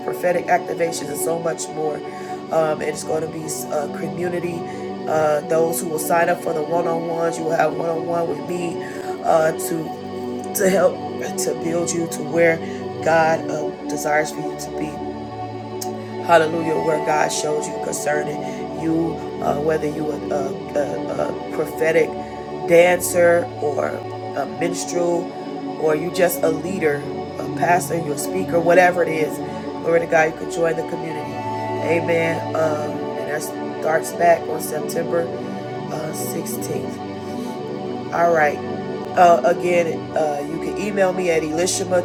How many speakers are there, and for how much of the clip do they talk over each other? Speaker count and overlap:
one, no overlap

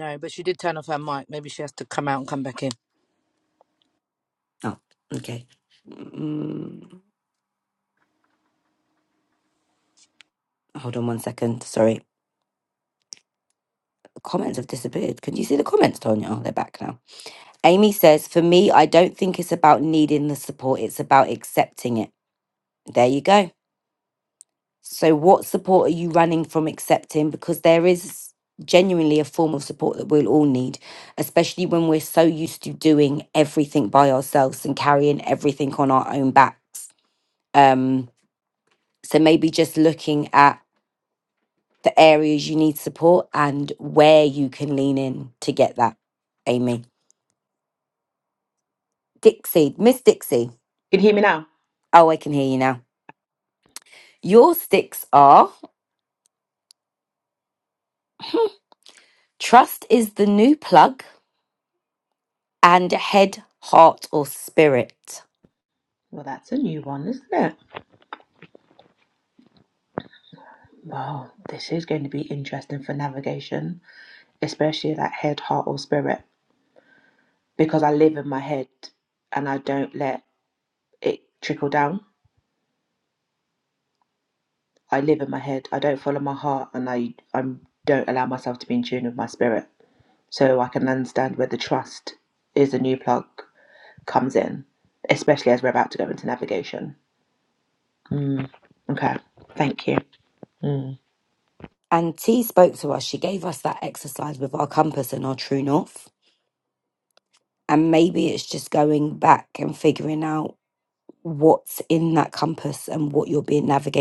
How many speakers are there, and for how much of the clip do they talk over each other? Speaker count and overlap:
three, no overlap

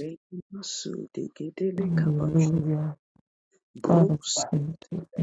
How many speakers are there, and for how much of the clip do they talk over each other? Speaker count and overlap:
two, about 19%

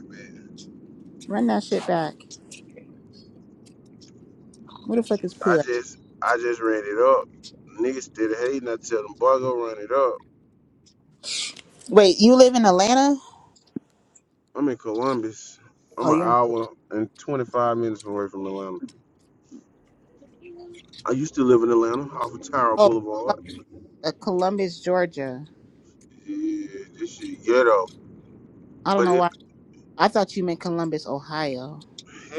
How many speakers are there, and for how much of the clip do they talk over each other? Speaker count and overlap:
two, about 3%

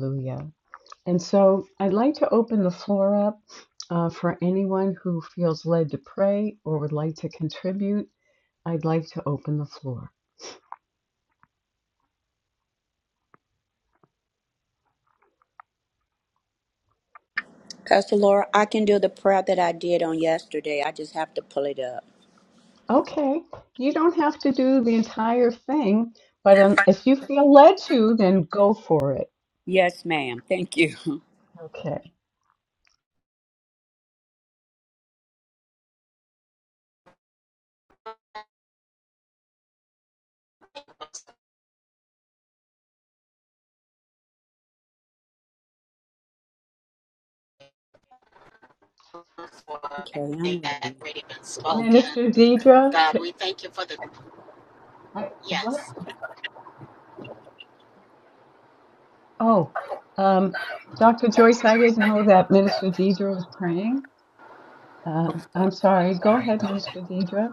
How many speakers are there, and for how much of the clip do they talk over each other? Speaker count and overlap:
three, about 3%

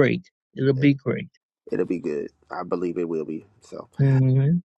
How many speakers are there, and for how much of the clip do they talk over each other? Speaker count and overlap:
two, no overlap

